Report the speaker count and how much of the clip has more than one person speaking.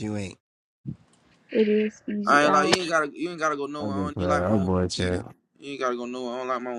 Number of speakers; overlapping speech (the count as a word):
three, about 25%